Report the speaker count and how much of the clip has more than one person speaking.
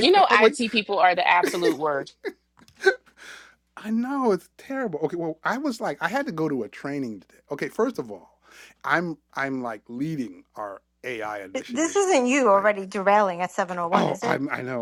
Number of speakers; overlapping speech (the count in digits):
3, about 11%